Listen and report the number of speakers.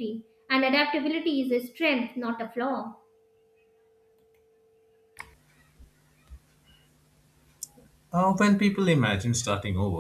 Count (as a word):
two